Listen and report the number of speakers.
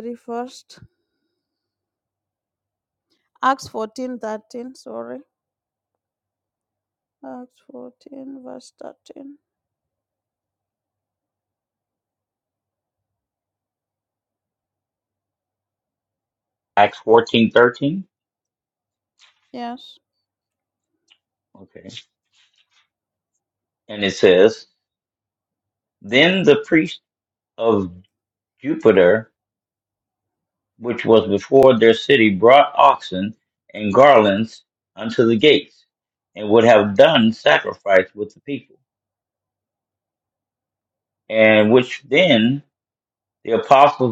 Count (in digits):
2